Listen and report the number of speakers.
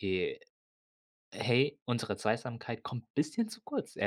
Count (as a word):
one